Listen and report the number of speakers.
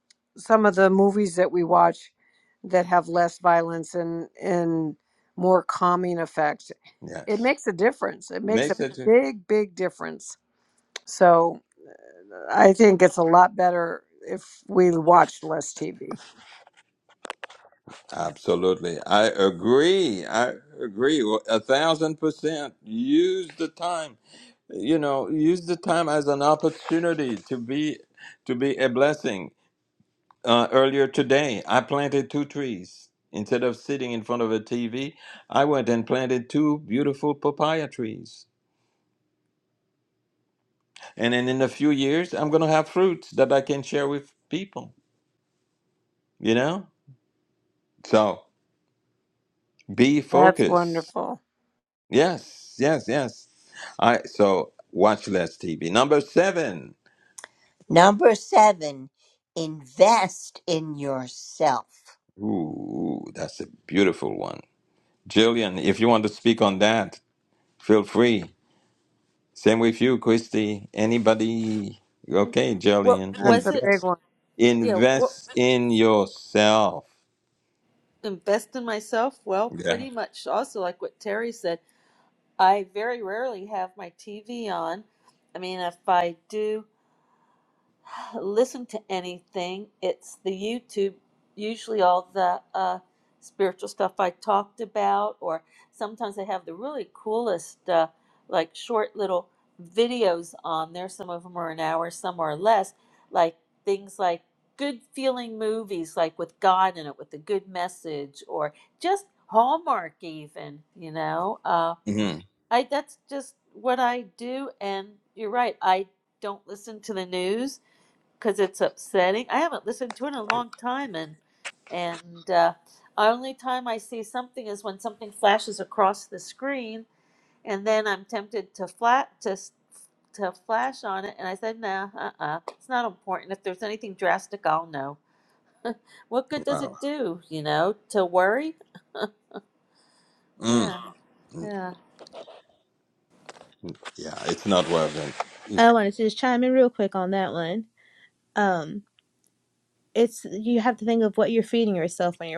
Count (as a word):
five